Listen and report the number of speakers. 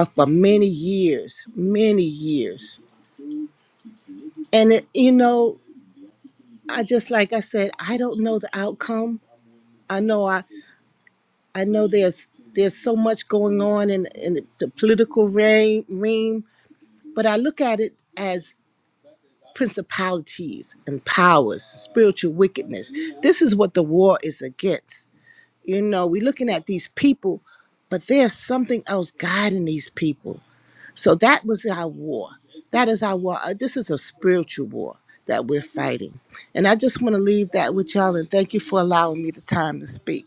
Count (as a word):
one